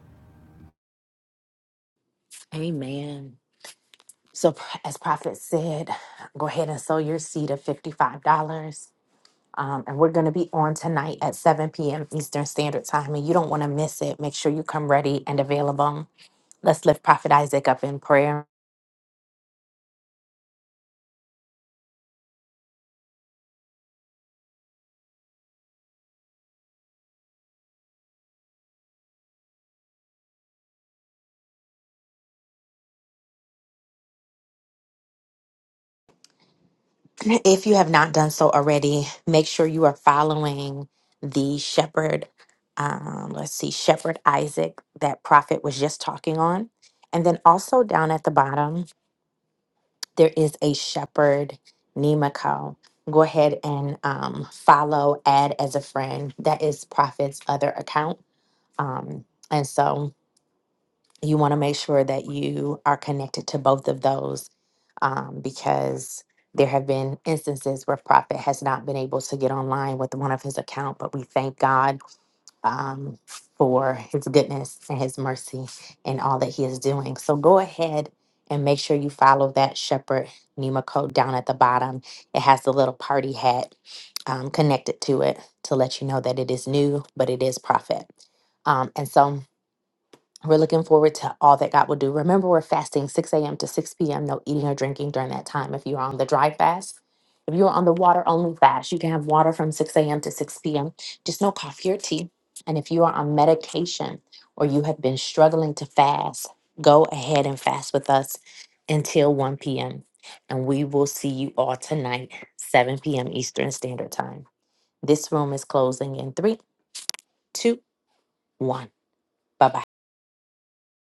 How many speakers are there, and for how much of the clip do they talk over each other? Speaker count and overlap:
1, no overlap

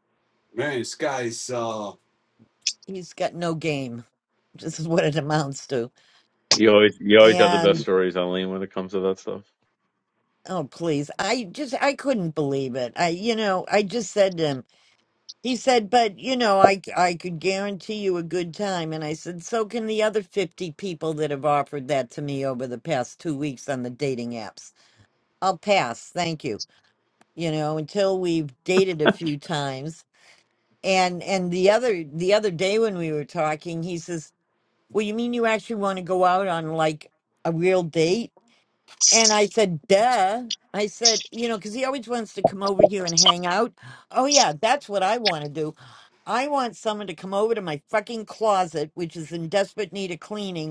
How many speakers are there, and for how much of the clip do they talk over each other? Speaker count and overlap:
3, about 1%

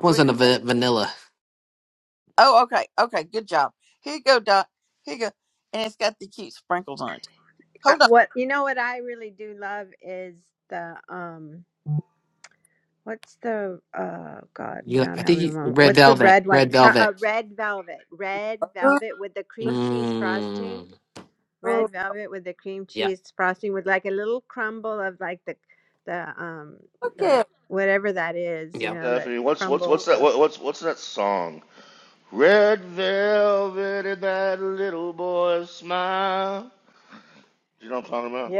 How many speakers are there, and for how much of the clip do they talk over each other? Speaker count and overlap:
4, about 15%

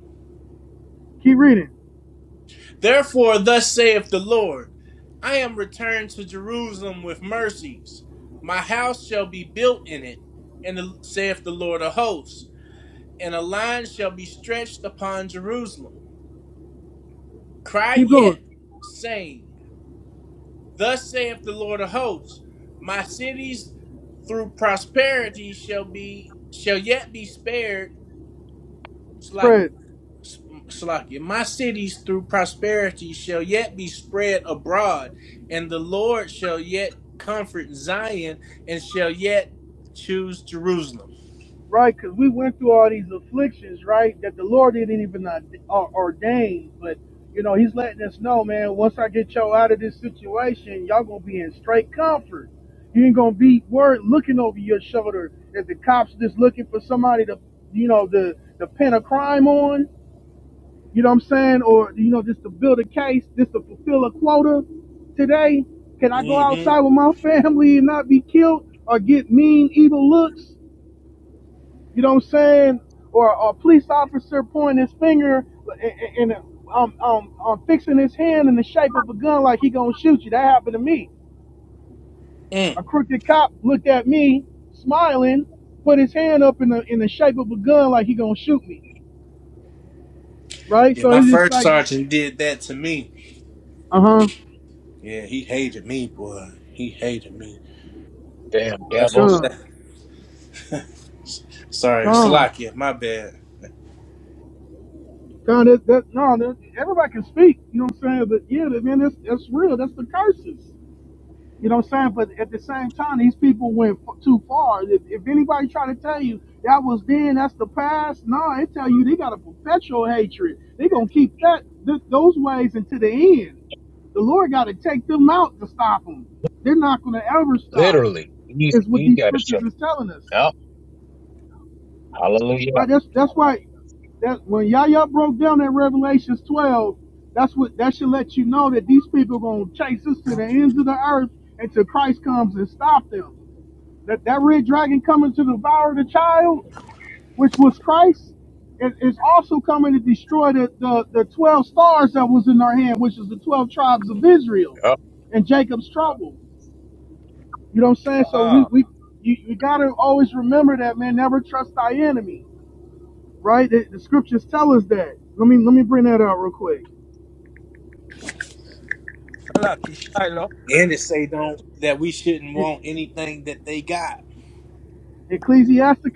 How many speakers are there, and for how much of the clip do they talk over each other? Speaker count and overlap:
4, about 3%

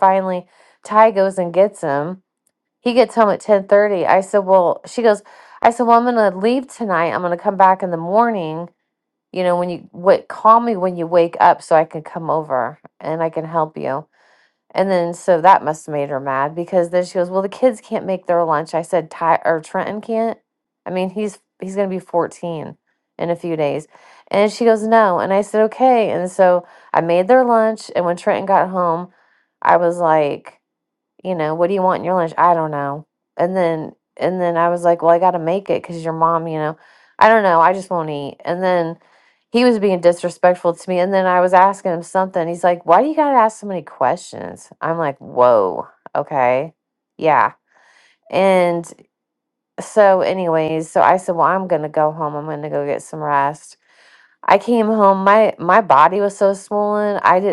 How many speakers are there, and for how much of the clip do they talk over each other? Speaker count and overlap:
1, no overlap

